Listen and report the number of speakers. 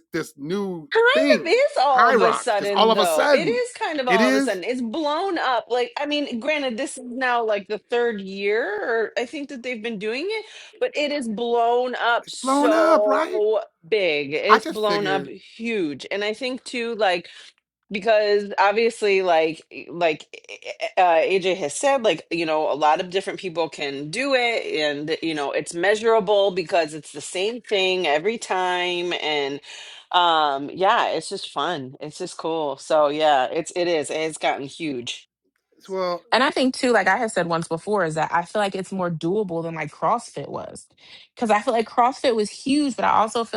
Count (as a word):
three